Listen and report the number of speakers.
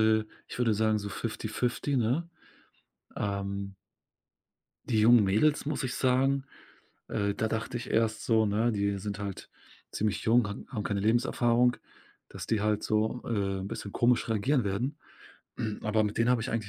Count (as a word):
one